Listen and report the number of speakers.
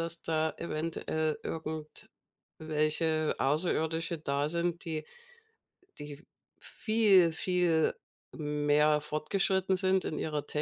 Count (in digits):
1